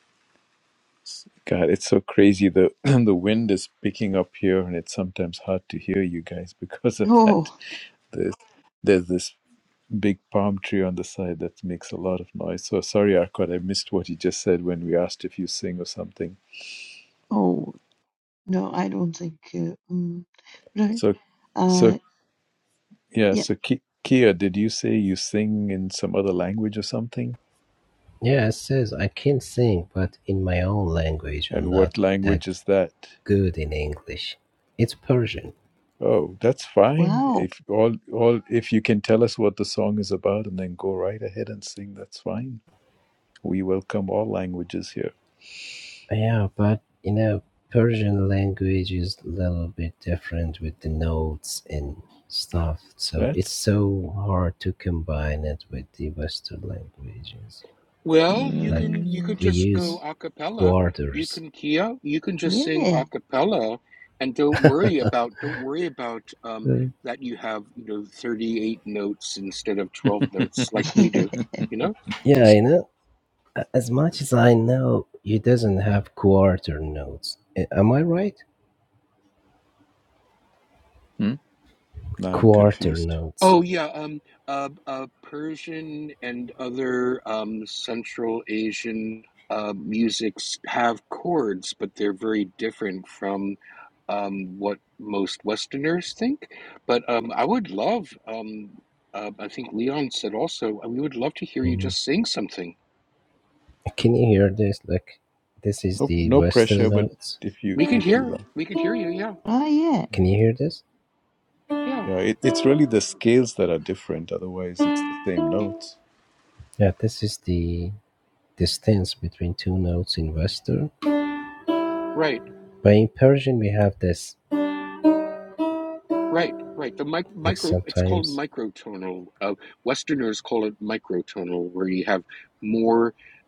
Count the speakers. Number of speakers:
four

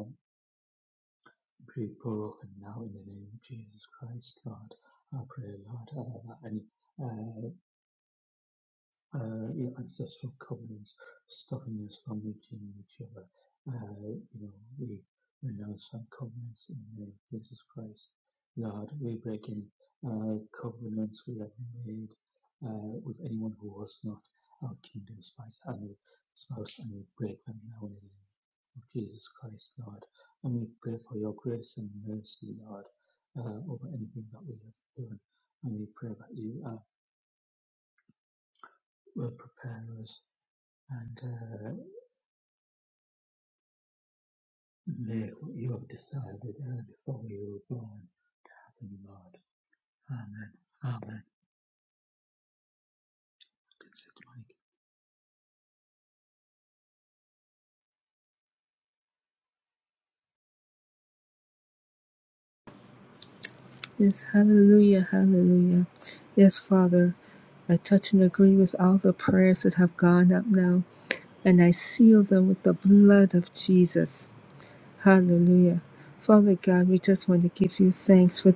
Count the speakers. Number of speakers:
two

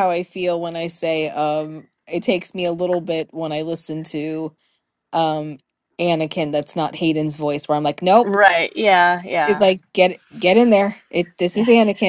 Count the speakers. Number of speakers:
two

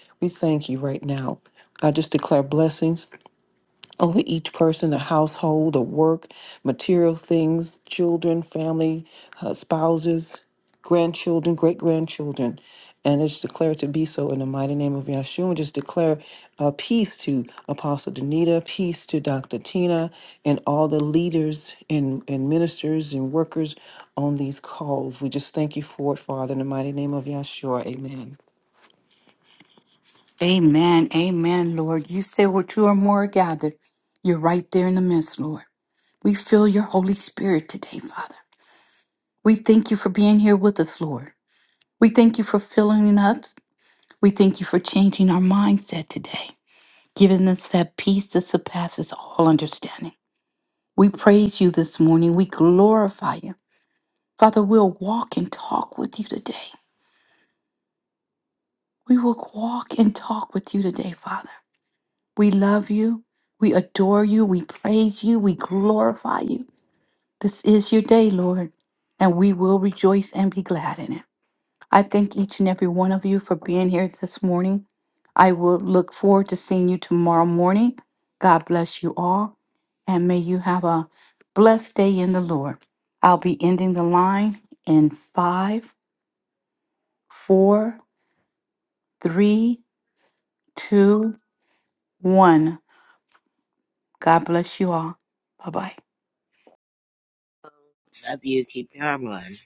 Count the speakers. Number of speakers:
three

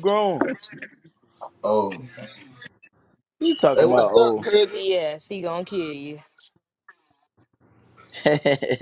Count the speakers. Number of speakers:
three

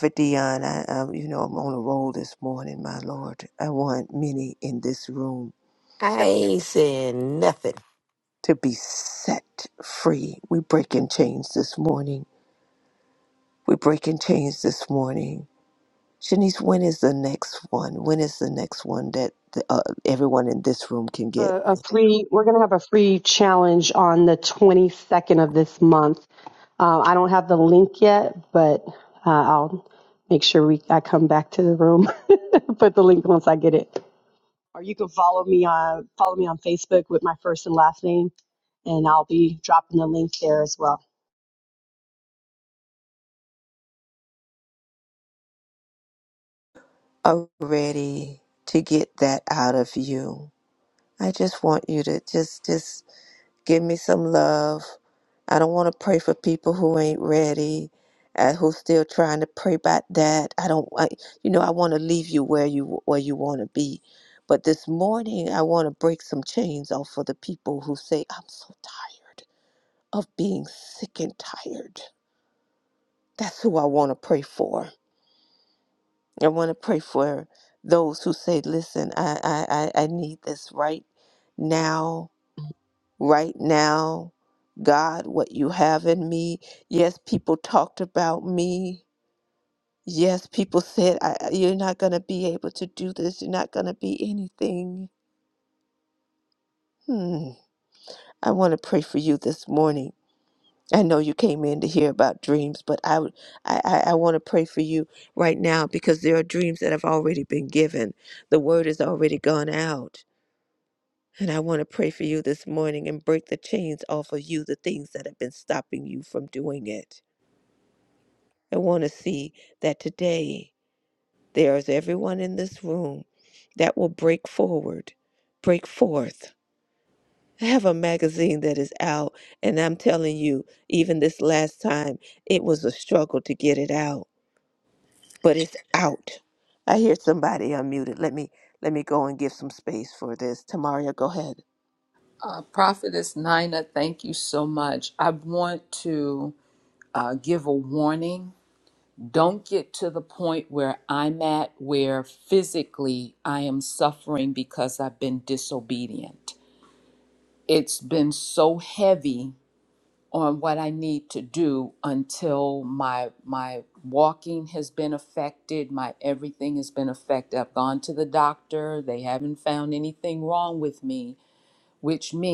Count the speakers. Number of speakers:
four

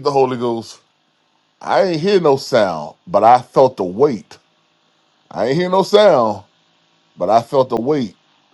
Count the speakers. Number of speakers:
one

